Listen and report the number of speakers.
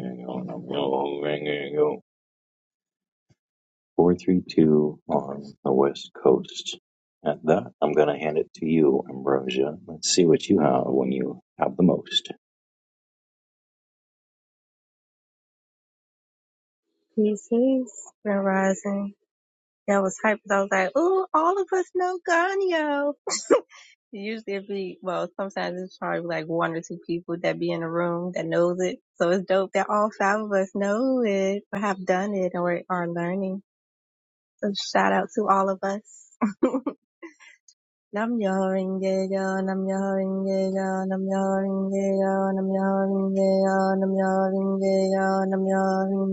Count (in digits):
2